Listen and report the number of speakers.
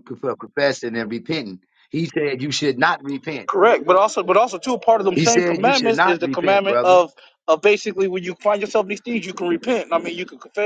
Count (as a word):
two